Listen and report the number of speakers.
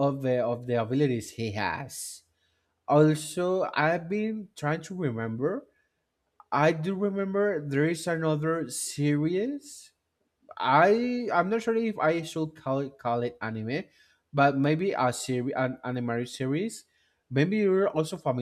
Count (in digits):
1